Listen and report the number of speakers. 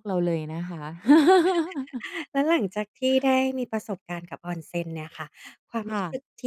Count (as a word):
two